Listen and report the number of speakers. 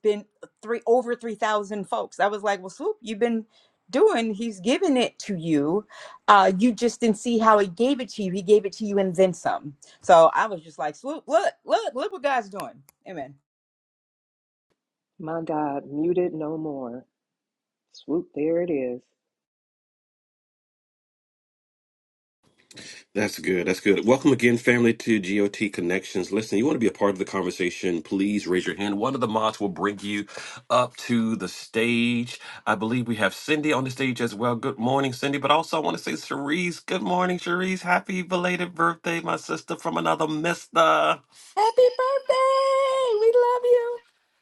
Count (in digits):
4